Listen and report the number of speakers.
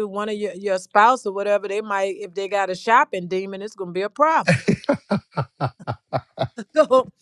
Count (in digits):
1